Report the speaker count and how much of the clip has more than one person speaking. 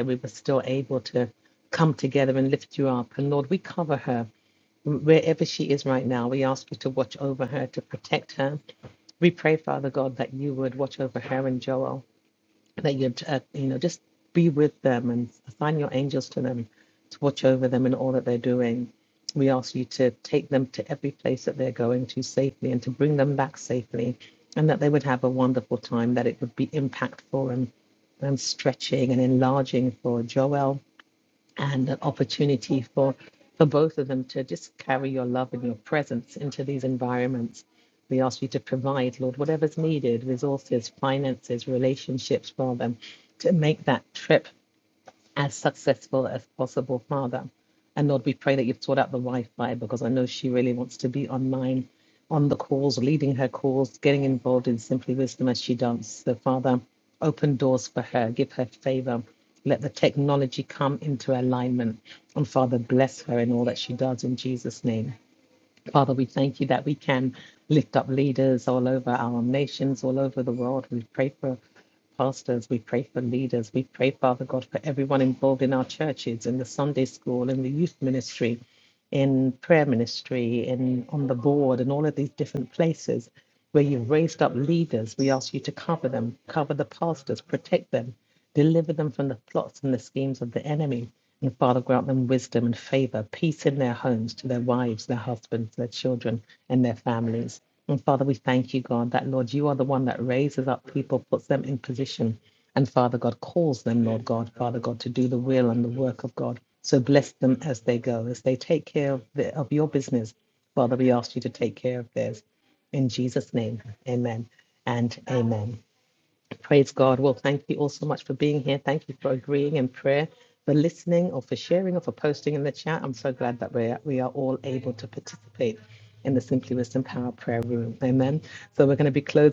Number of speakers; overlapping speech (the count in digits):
1, no overlap